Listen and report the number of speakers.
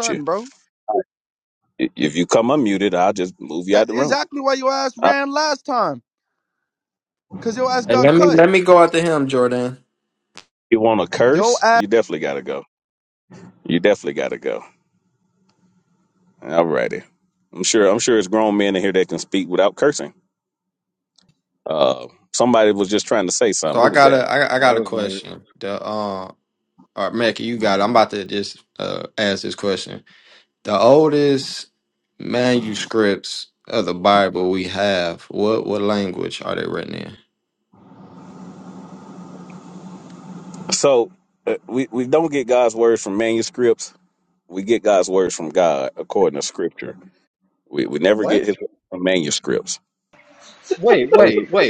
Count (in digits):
4